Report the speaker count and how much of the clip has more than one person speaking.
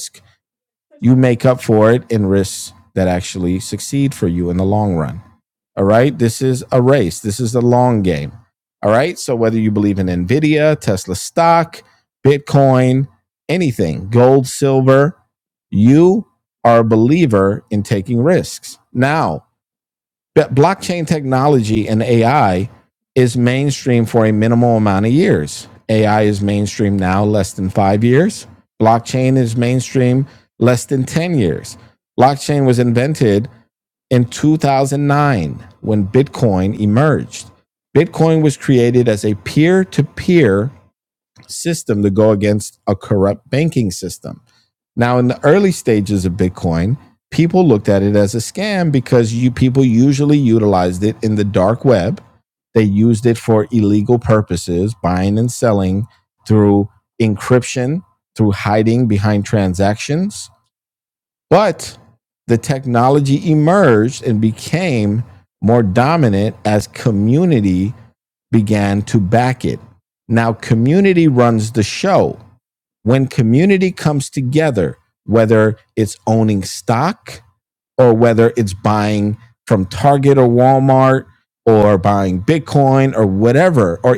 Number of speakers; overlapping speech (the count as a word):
one, no overlap